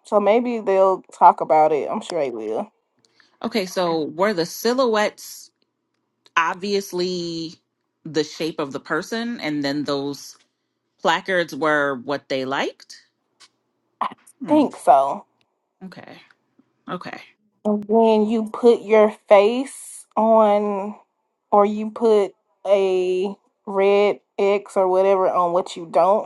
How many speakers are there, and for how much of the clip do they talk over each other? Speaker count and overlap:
2, about 1%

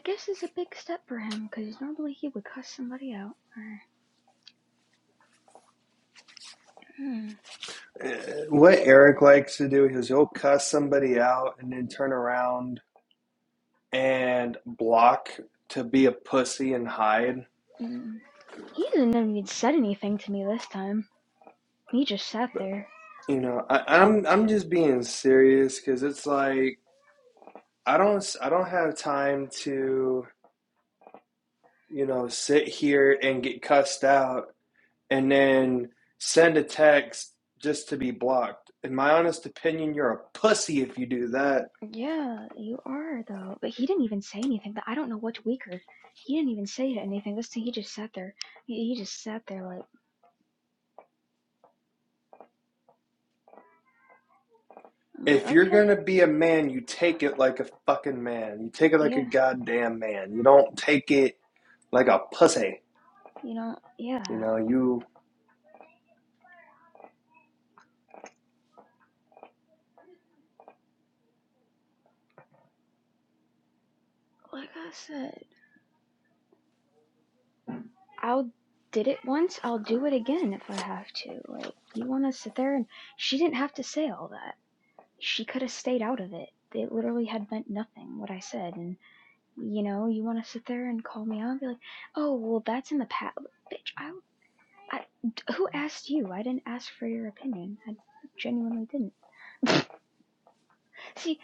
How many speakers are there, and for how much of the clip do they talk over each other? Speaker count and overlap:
2, about 1%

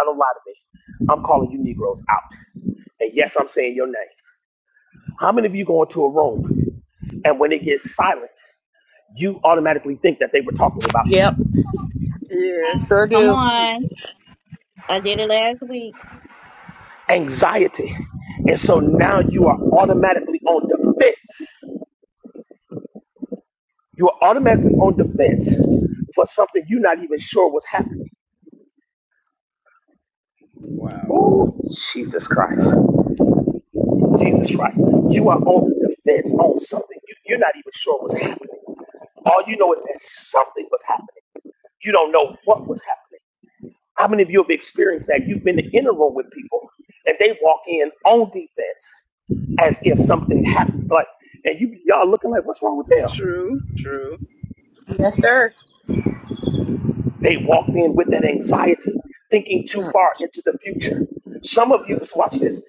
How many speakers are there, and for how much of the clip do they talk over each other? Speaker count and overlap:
4, about 2%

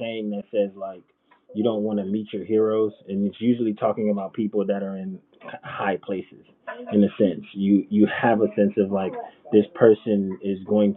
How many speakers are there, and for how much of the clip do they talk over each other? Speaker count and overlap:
1, no overlap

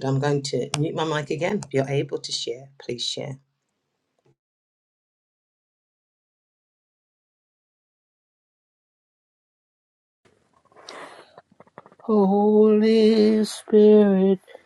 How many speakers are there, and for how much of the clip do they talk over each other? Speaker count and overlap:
2, no overlap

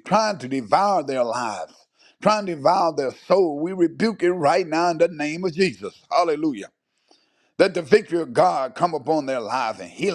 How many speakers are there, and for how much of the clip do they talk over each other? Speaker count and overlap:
1, no overlap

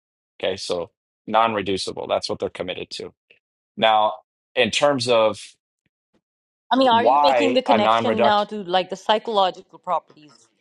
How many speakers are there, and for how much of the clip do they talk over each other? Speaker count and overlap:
2, about 14%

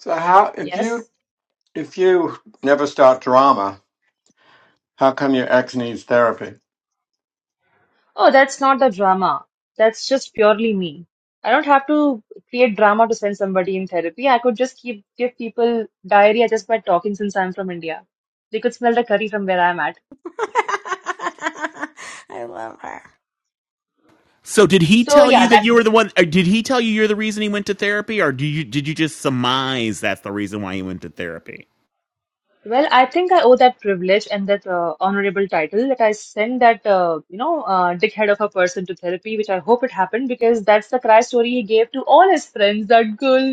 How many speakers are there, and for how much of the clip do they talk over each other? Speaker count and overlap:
4, about 2%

